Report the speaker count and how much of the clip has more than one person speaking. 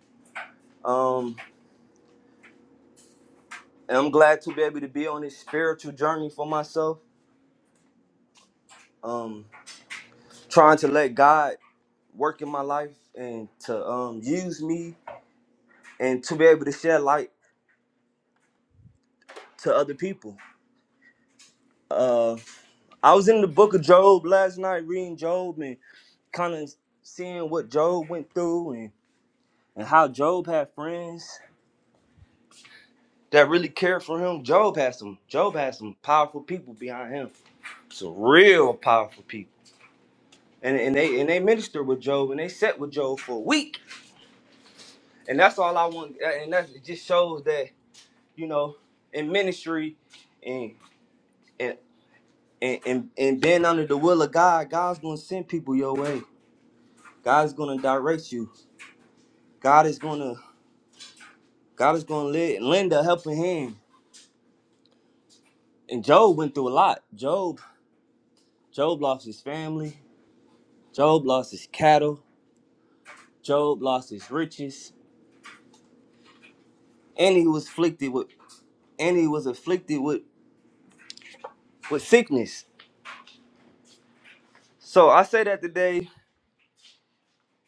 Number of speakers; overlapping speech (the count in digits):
1, no overlap